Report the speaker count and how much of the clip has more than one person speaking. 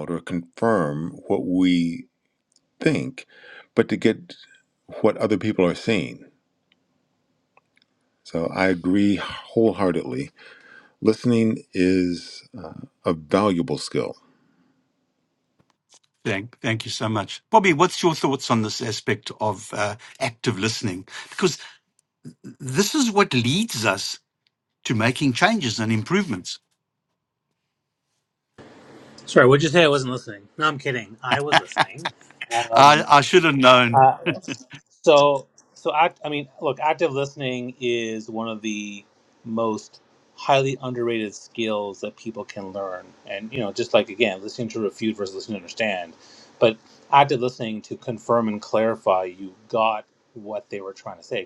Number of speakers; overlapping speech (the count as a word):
three, about 1%